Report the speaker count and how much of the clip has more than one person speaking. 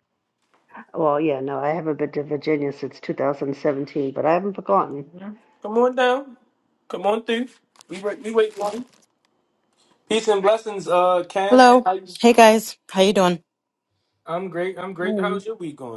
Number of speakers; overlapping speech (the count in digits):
3, about 6%